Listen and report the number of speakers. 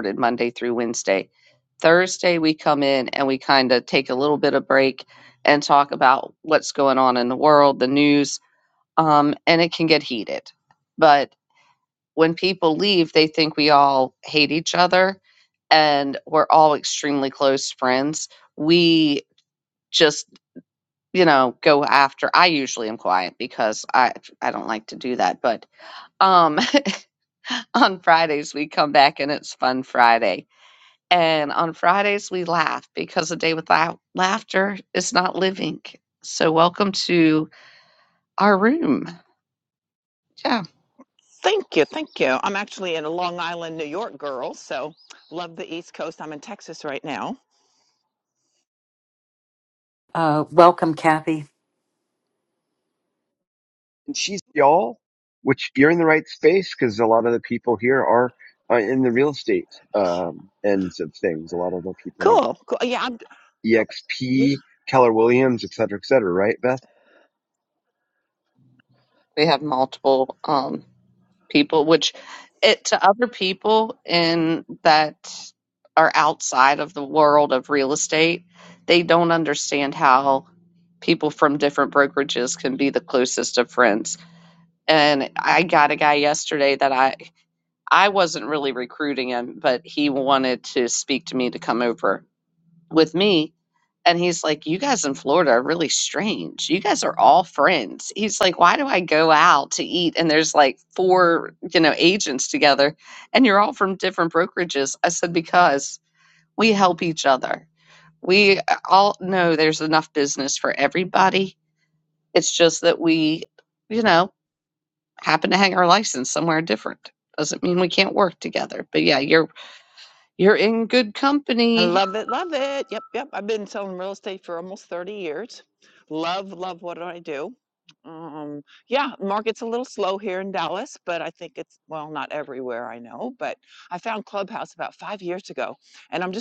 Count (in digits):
4